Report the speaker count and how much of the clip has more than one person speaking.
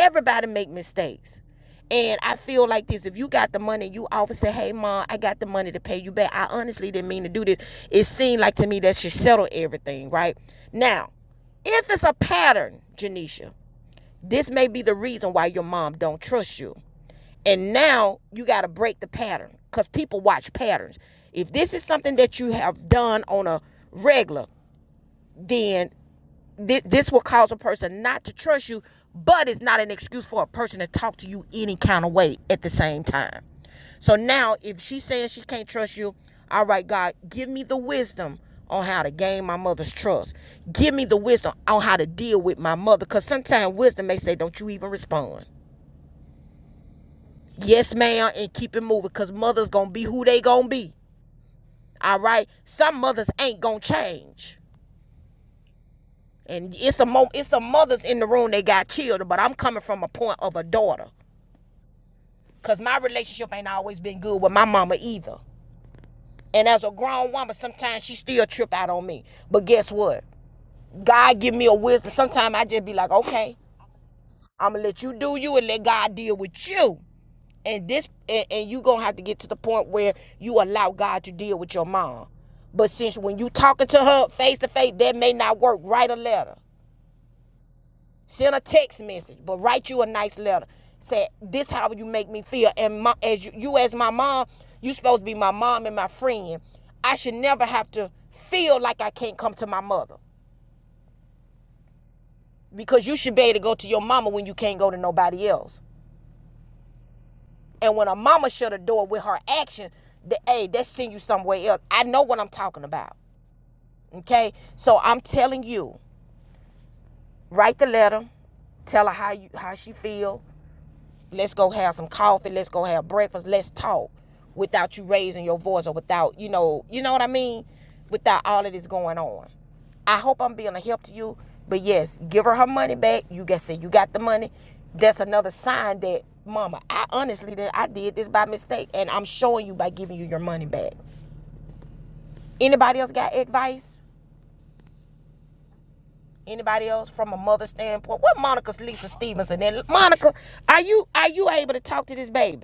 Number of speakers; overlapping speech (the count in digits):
1, no overlap